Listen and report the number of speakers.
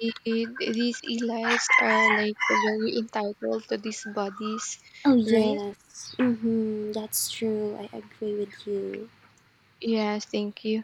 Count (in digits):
2